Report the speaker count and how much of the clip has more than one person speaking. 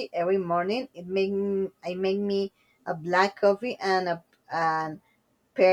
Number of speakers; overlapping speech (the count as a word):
one, no overlap